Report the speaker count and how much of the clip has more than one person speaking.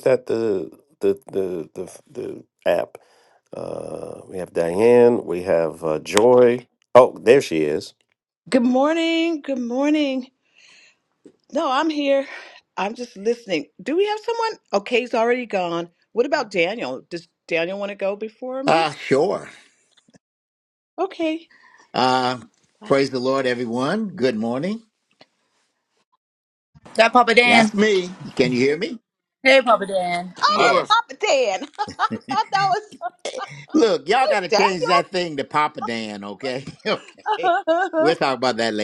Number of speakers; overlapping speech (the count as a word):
four, about 3%